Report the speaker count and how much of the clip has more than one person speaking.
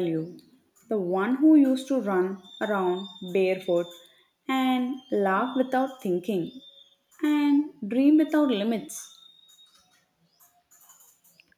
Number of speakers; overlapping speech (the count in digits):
1, no overlap